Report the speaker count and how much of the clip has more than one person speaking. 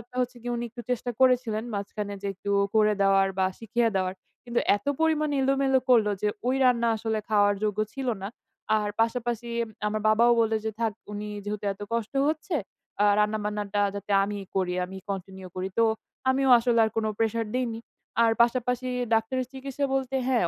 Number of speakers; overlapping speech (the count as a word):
one, no overlap